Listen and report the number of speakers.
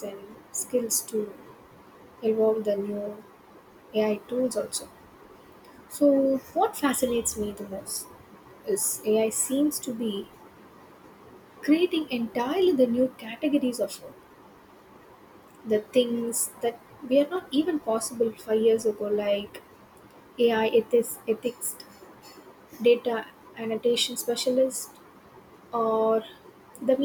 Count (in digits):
1